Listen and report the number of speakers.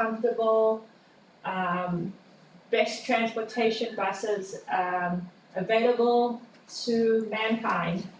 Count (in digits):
1